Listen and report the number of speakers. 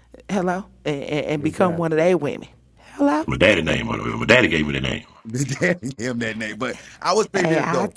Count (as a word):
three